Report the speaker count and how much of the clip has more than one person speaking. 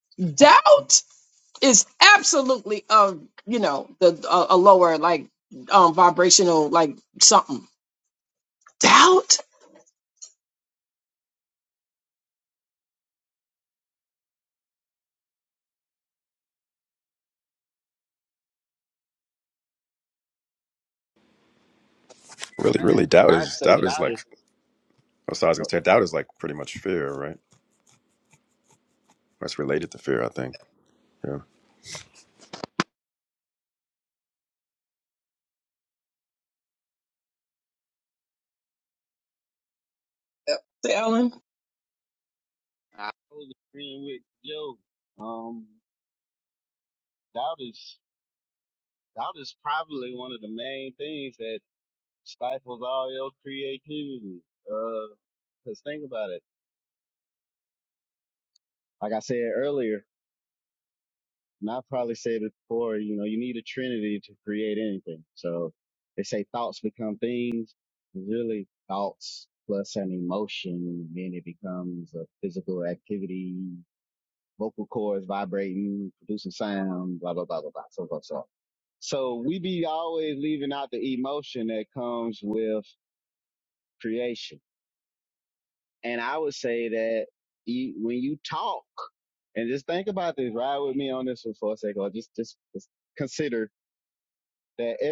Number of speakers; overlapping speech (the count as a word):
three, about 1%